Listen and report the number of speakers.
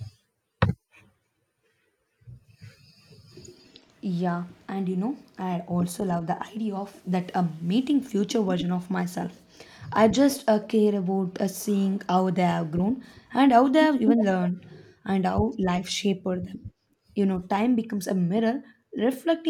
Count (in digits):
1